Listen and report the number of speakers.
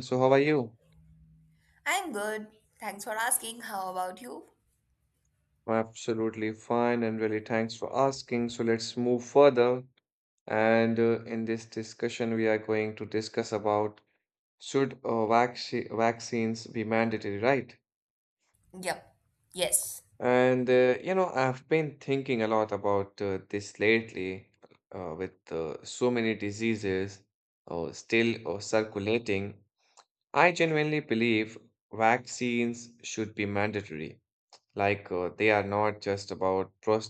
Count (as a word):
two